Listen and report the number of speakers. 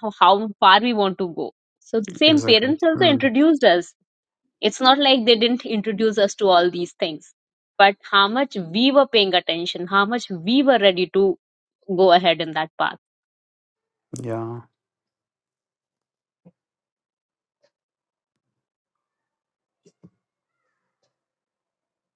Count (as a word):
two